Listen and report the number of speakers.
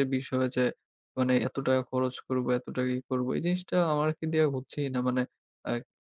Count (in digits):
1